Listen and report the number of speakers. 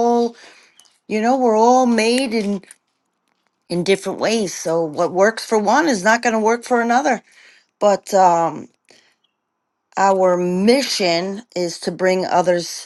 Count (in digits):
1